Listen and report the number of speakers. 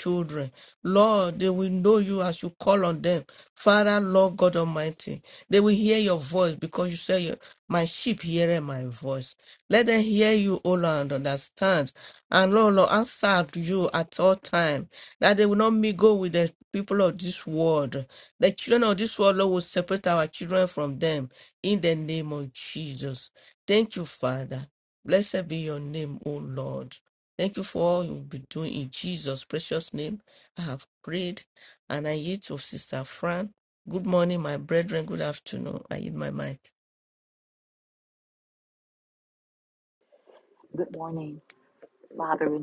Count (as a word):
two